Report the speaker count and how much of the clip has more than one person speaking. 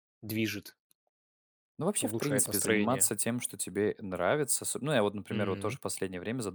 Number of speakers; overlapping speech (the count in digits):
2, about 23%